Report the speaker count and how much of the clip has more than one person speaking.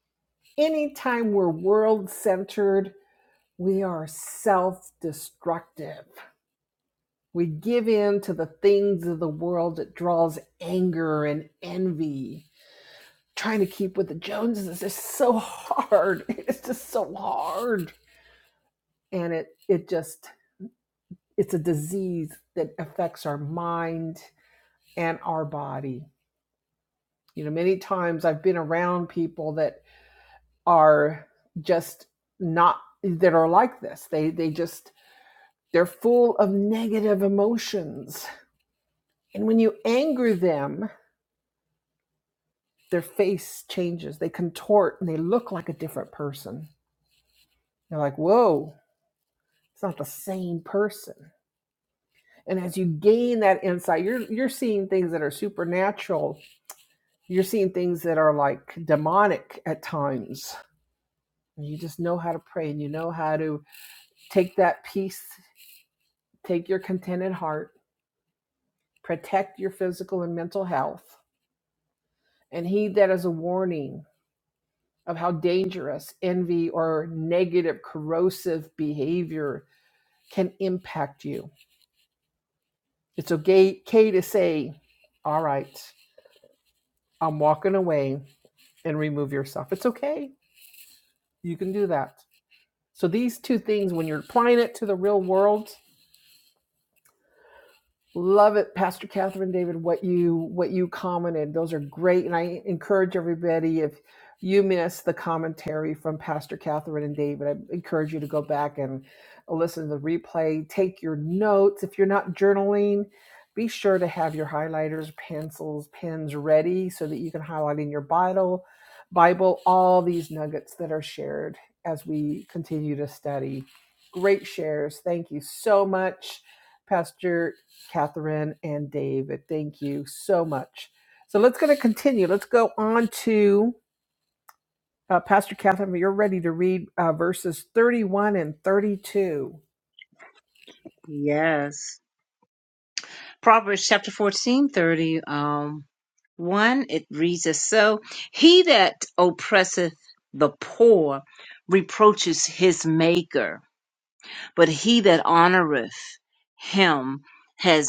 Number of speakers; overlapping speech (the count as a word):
two, no overlap